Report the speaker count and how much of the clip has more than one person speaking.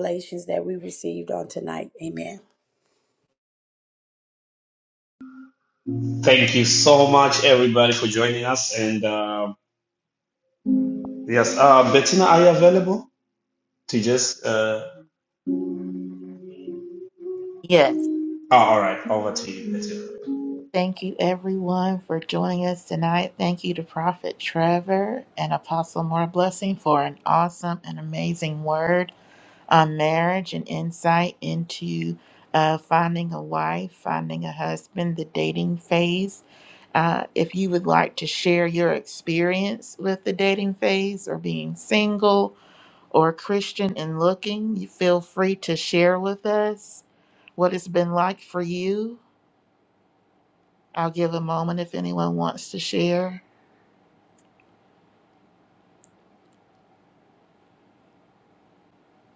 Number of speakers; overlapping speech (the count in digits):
3, no overlap